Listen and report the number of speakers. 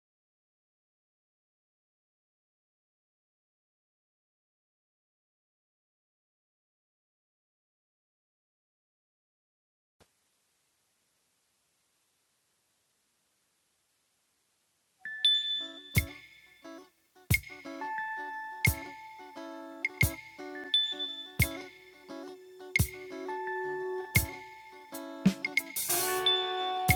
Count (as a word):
zero